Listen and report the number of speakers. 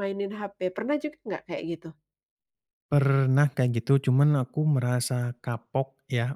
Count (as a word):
two